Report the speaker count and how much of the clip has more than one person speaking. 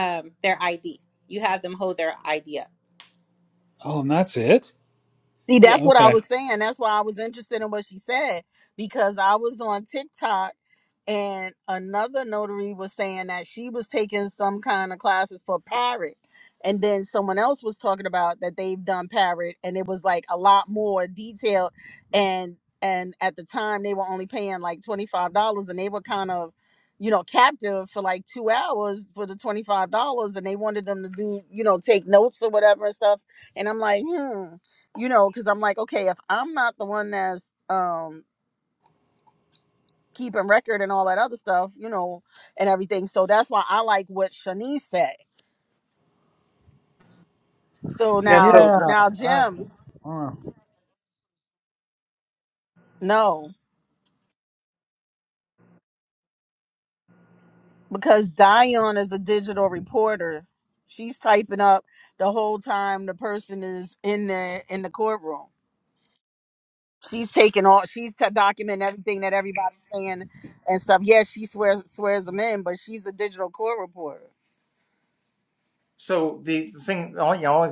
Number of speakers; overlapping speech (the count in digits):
4, about 2%